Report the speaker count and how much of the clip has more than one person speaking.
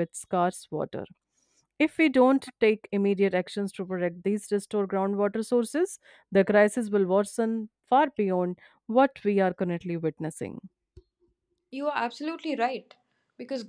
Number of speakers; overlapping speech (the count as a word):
two, no overlap